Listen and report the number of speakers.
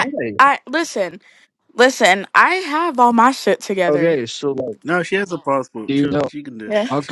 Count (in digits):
3